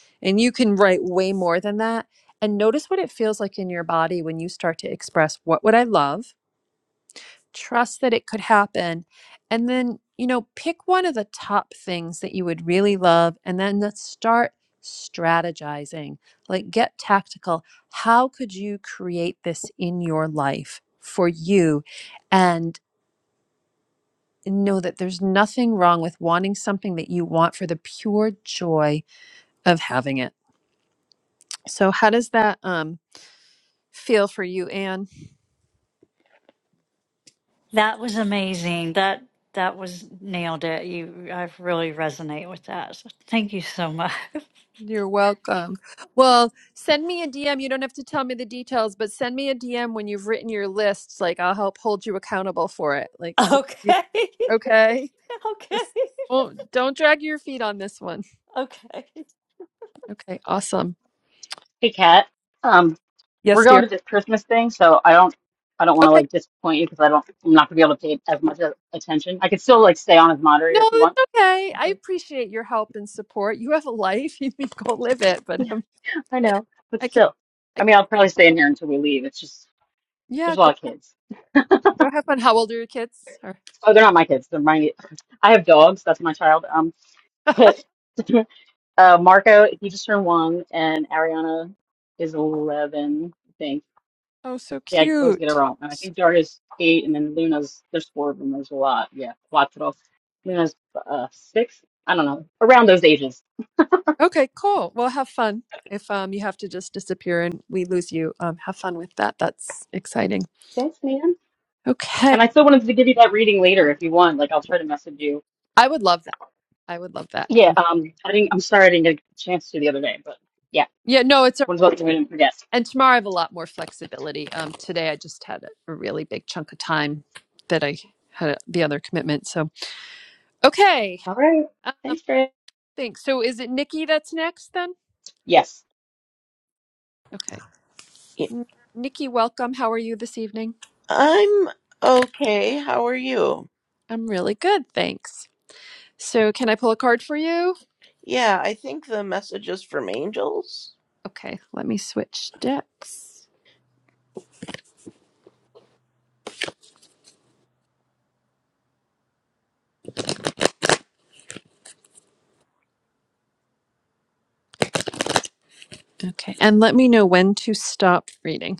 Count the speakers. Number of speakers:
four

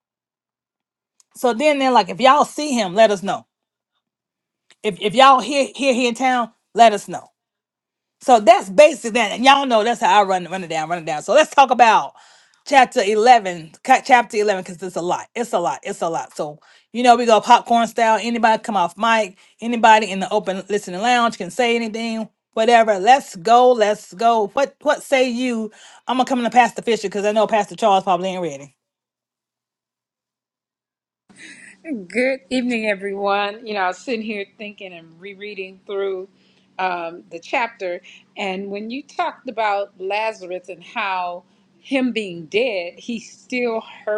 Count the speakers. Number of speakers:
two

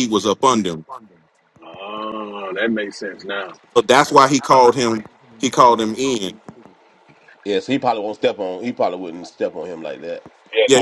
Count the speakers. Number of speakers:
three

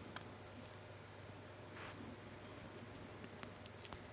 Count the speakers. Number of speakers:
zero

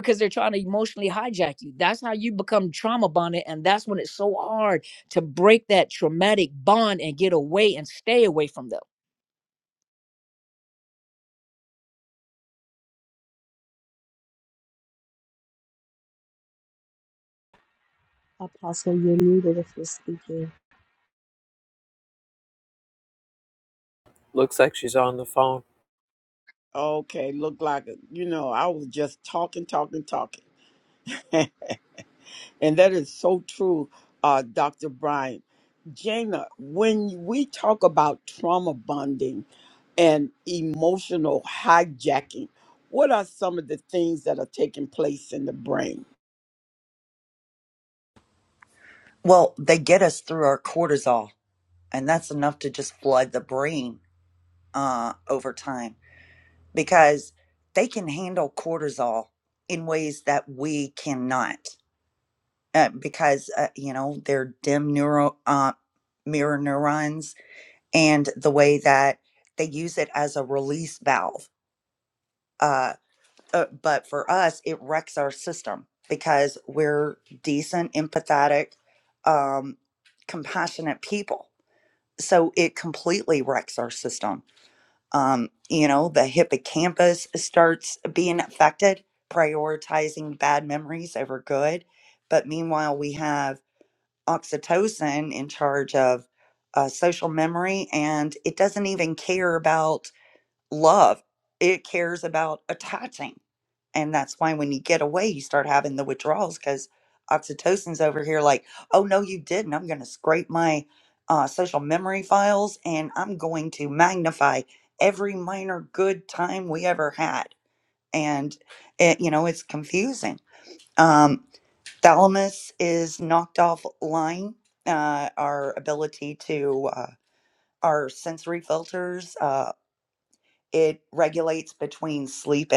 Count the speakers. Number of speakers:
five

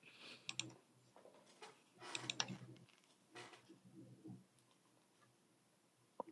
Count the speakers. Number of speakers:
zero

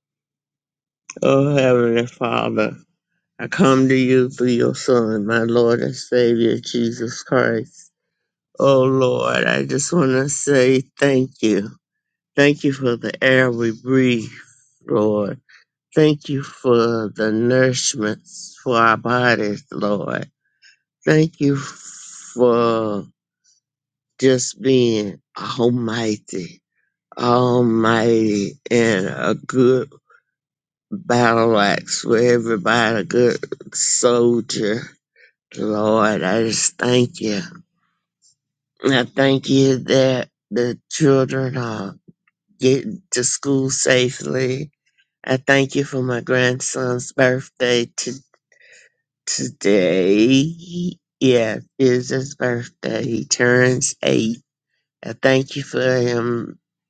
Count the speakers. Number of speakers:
one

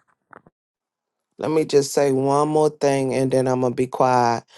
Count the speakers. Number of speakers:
one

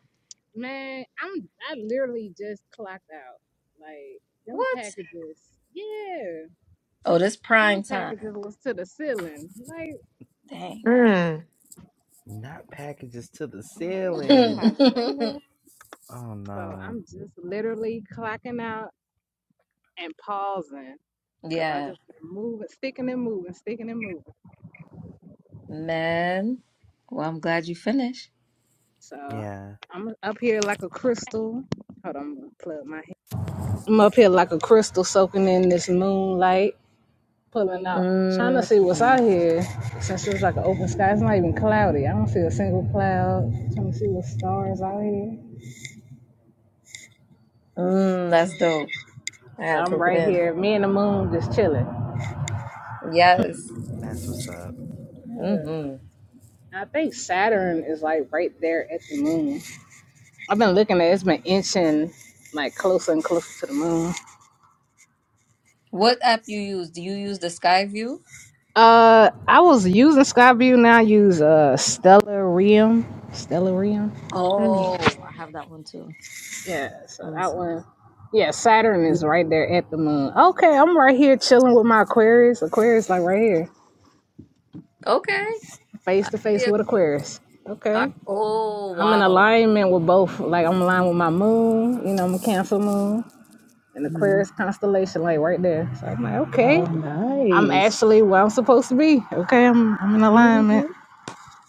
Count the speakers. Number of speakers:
five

